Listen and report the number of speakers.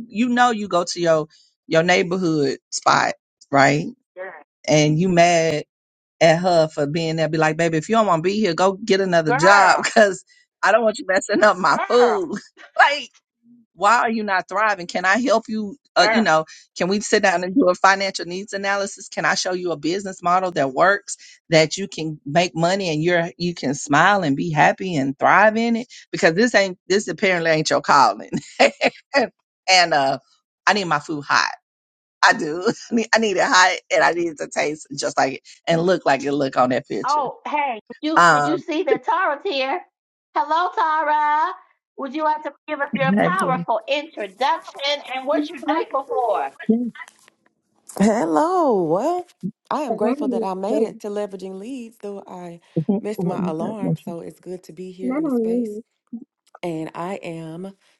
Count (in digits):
3